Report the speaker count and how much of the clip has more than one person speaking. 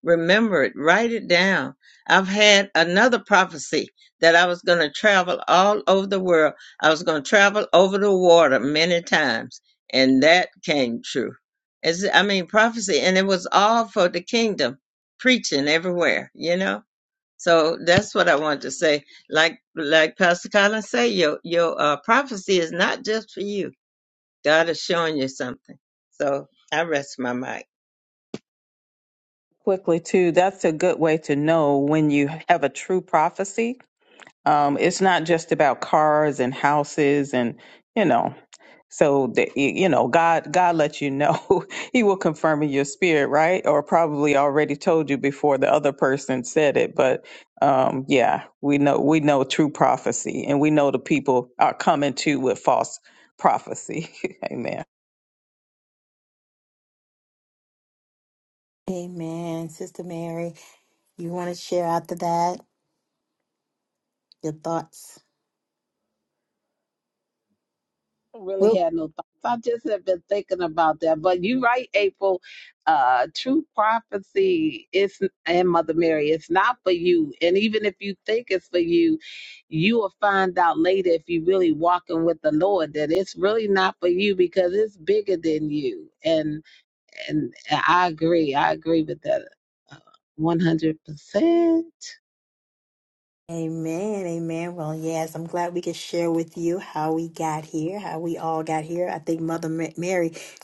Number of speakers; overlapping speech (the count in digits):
4, under 1%